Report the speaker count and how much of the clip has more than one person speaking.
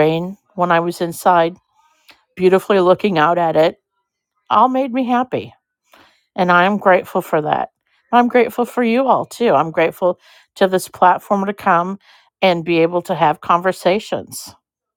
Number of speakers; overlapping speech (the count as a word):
one, no overlap